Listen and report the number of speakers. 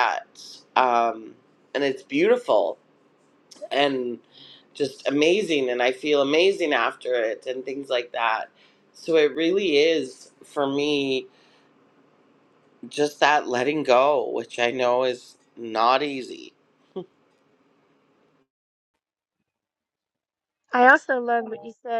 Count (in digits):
2